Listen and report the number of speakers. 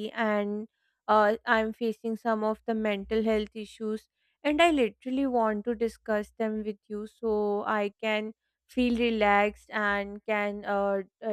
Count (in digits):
1